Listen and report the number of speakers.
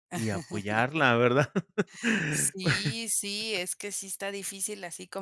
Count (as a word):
two